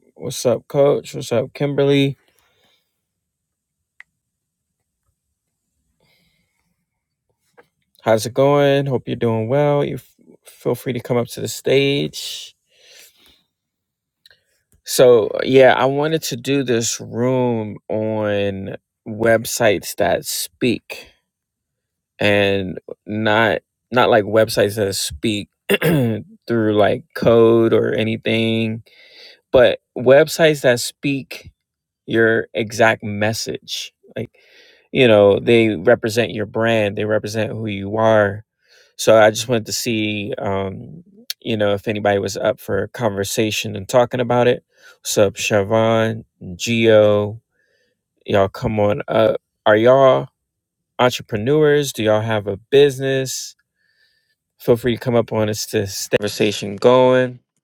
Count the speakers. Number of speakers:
1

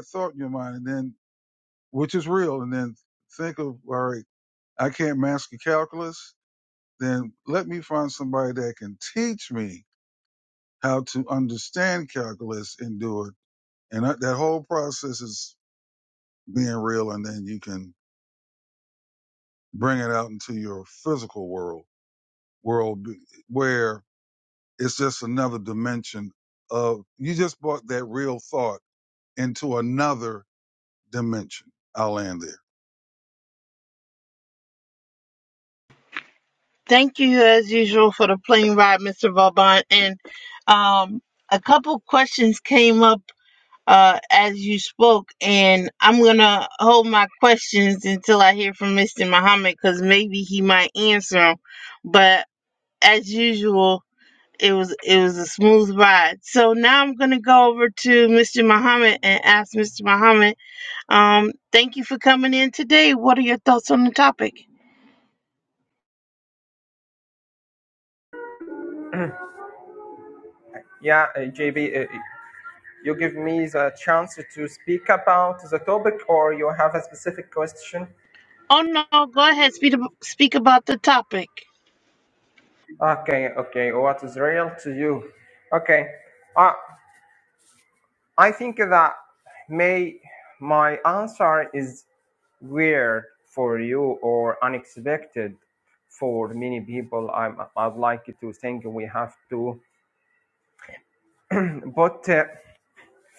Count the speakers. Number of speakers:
3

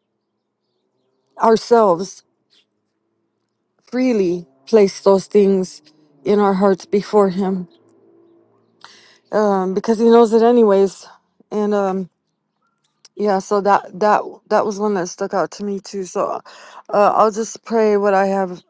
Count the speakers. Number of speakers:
1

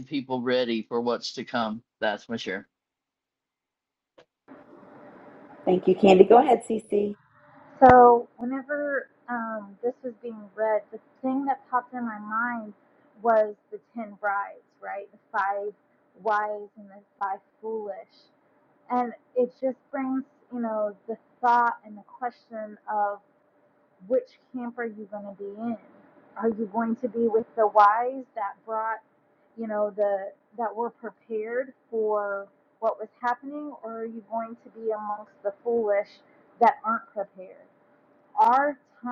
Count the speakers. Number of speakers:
3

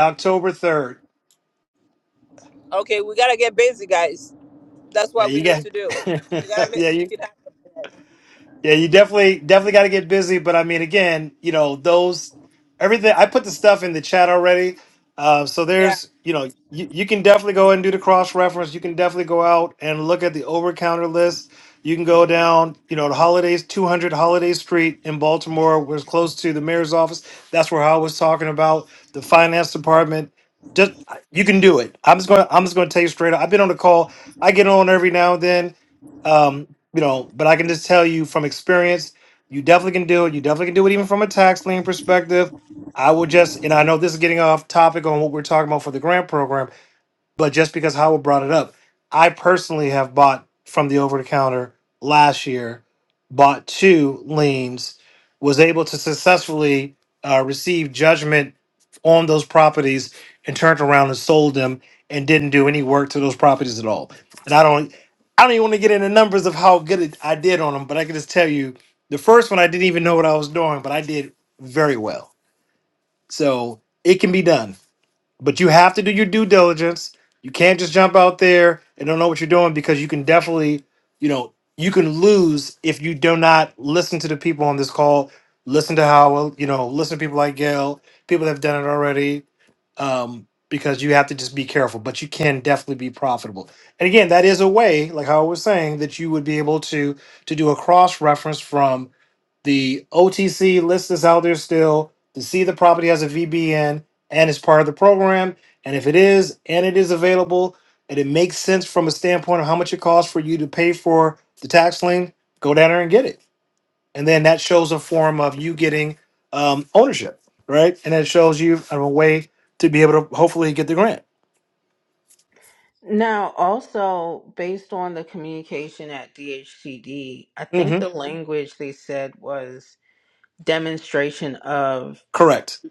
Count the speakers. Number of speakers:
3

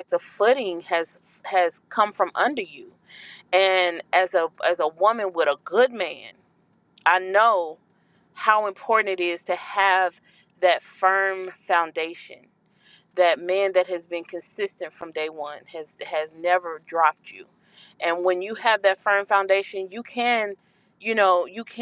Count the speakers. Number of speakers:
1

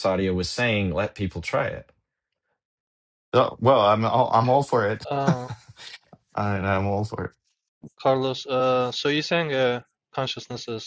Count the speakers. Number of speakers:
3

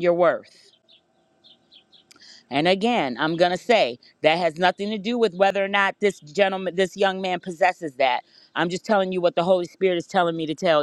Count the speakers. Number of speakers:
1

